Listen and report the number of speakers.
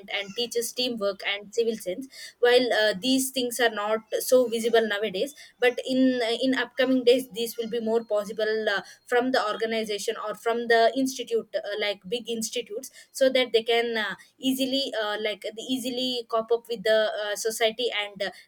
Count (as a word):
one